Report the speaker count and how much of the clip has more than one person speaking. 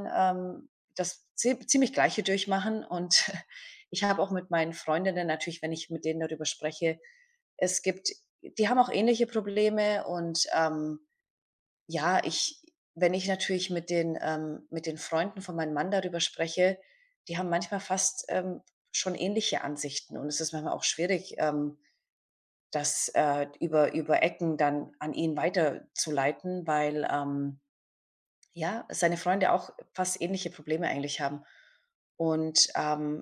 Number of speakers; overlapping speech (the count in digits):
1, no overlap